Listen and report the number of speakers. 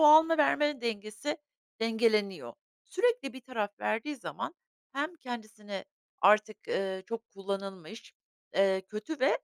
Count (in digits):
1